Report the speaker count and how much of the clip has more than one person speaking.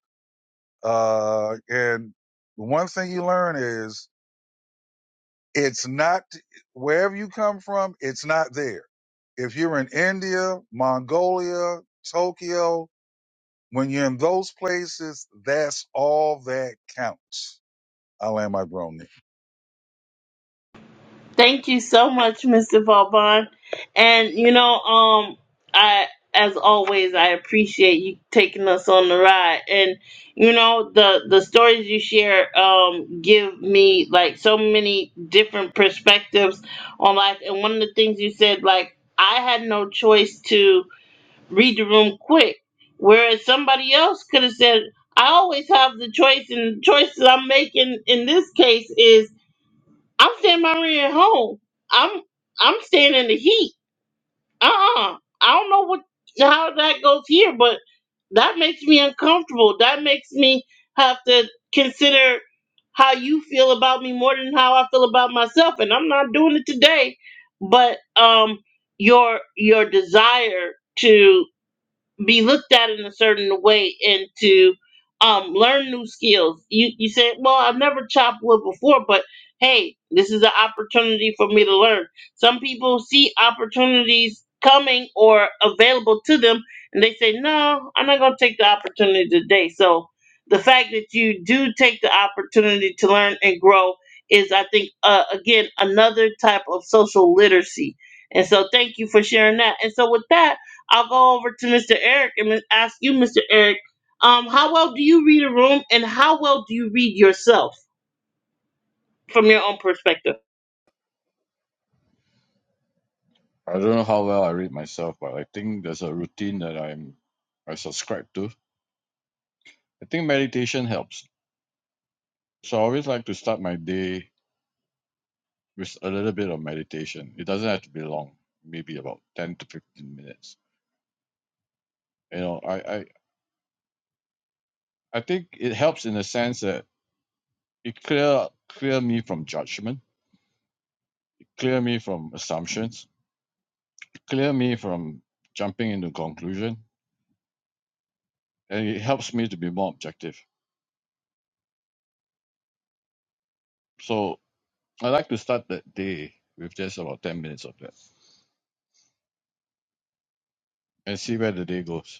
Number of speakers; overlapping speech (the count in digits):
3, no overlap